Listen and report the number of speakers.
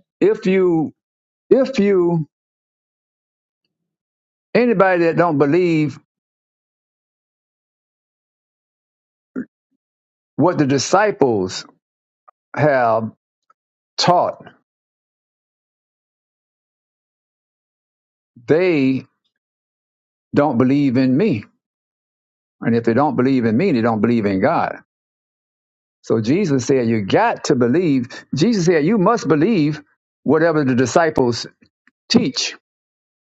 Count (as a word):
one